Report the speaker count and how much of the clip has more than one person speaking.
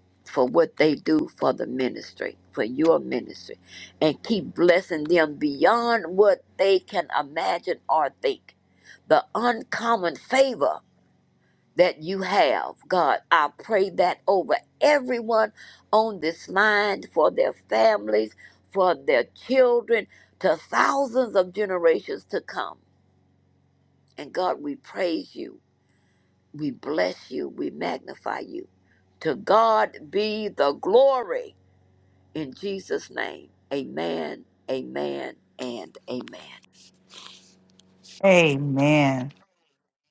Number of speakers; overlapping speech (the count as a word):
two, no overlap